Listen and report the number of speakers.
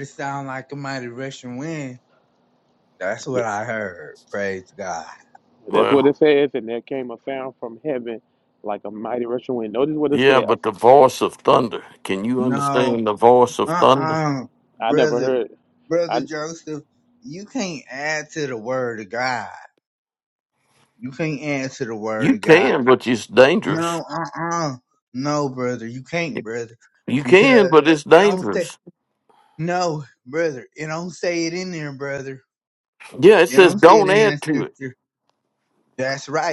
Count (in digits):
3